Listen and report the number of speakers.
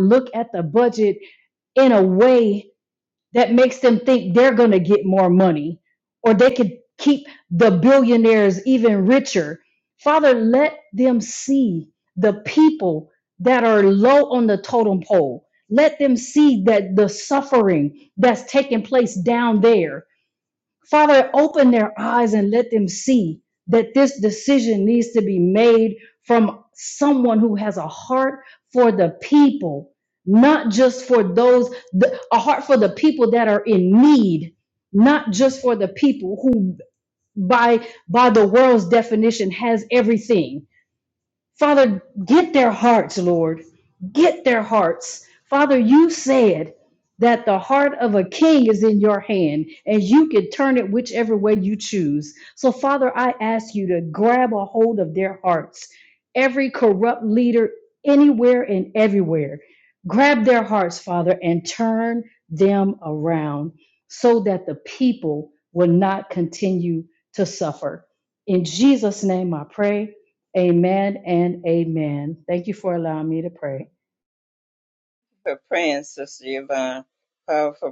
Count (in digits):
2